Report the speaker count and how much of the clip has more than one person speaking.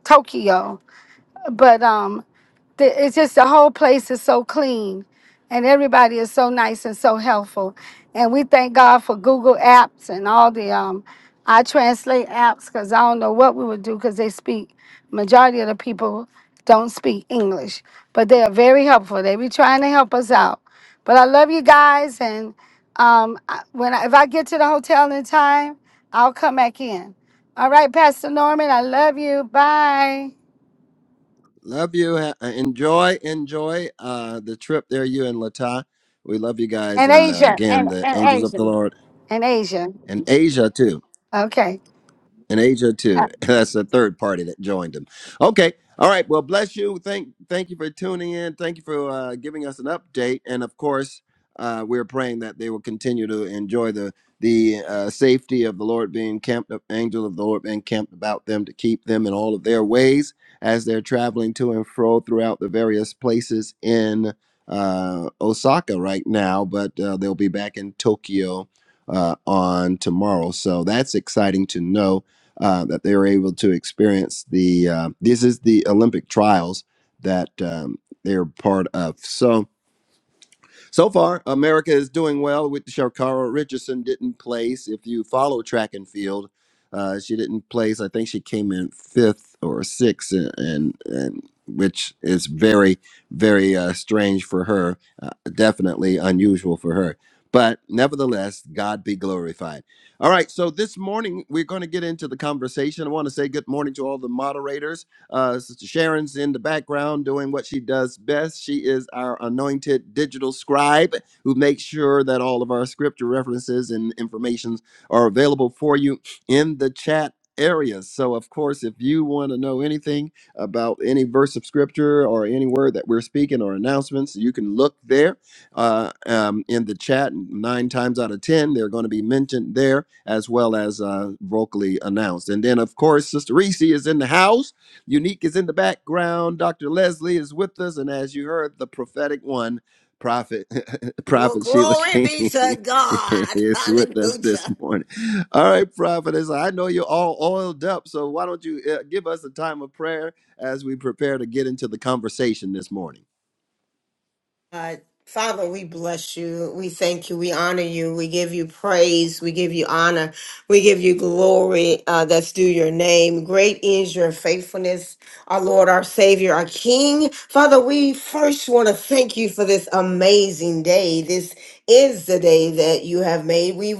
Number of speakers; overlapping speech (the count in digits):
3, about 3%